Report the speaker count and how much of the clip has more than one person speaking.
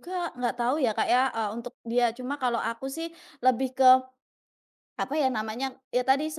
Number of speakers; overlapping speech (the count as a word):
one, no overlap